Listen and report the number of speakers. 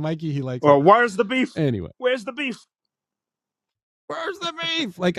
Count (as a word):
two